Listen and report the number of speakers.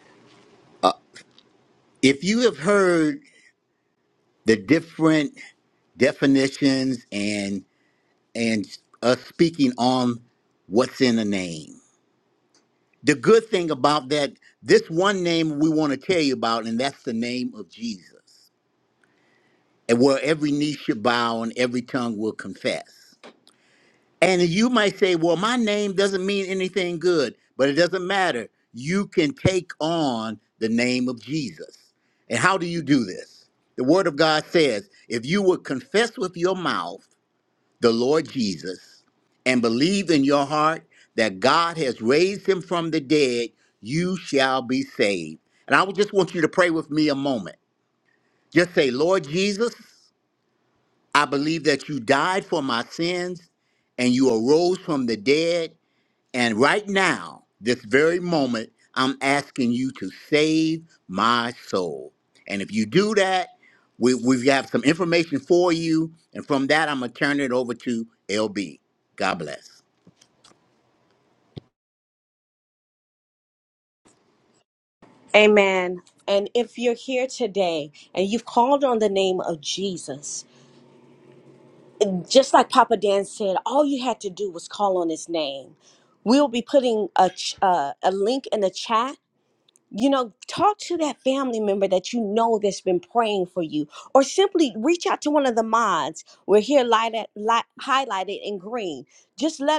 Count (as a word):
two